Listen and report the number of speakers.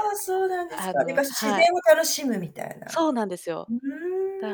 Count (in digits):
2